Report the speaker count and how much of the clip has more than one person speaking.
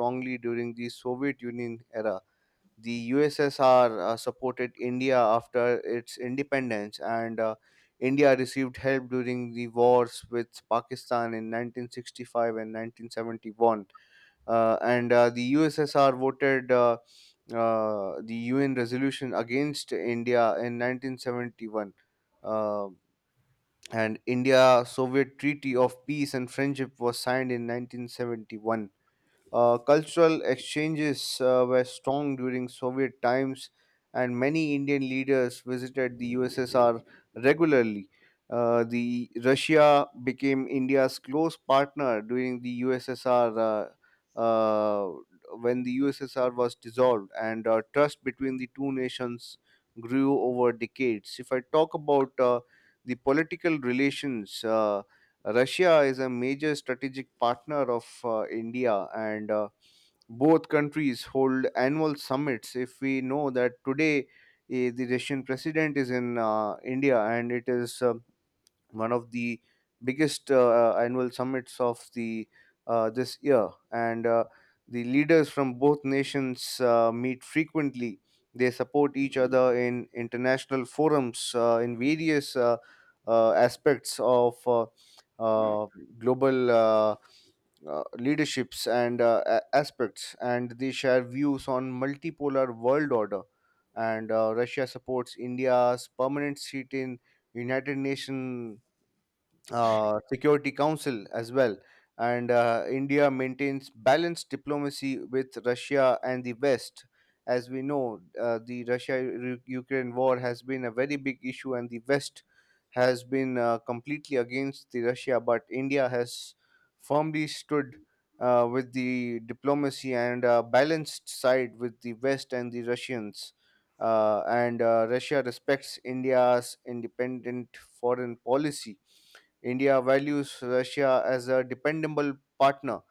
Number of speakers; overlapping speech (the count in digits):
1, no overlap